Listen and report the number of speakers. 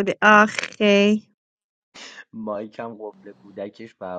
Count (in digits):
2